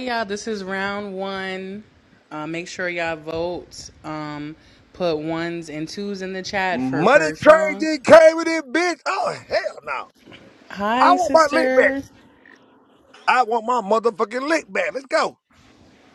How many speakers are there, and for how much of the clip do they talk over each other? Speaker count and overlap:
2, about 13%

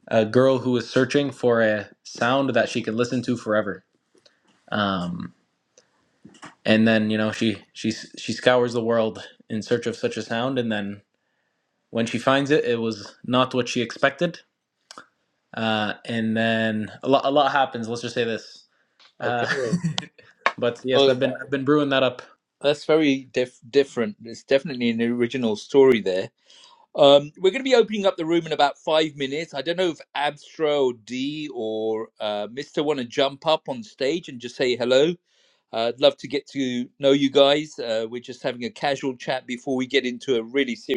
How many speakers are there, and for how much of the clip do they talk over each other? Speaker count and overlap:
2, about 2%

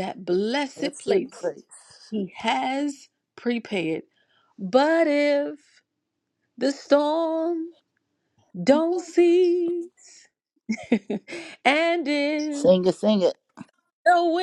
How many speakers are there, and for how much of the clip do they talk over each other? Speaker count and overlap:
2, about 5%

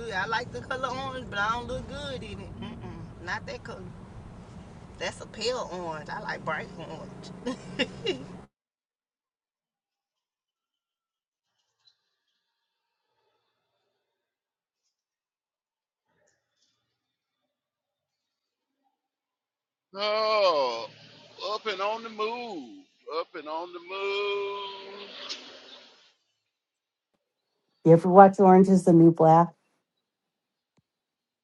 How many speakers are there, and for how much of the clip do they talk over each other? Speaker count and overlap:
3, no overlap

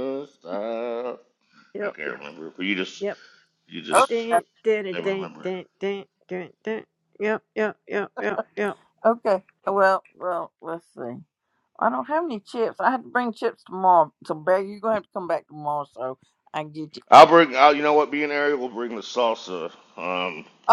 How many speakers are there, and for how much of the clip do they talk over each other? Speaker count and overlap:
3, about 5%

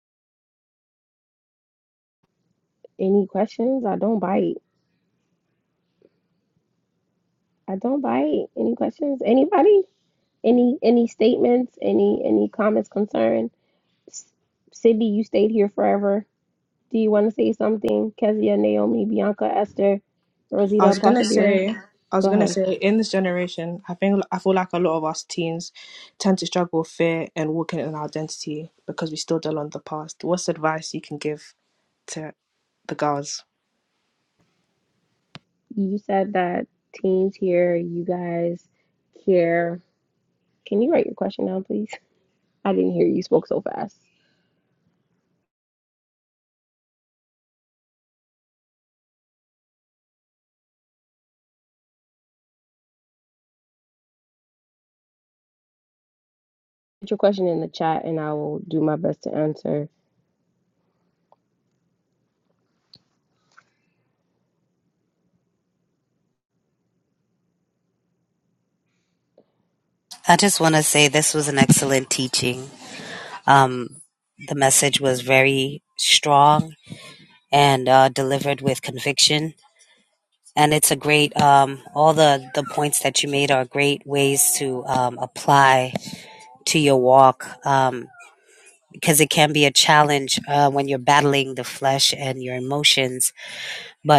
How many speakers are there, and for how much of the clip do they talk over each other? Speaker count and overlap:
3, about 1%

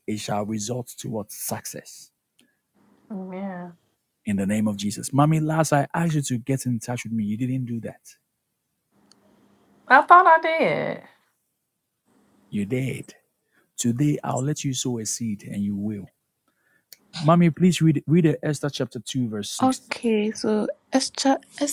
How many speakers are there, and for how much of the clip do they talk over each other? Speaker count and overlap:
3, about 1%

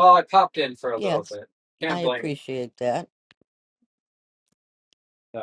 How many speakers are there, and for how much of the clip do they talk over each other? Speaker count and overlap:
2, about 12%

